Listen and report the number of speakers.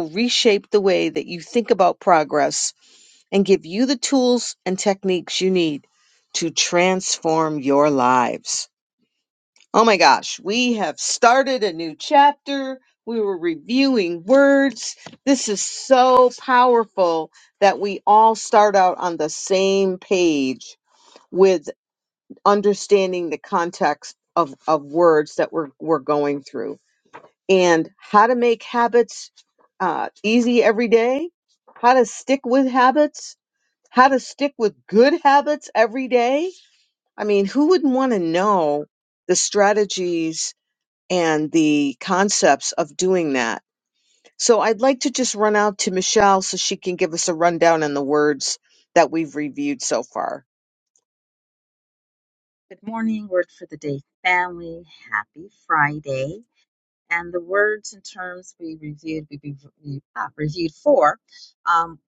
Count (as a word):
two